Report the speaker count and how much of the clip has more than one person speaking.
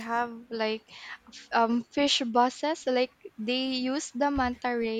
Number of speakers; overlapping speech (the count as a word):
one, no overlap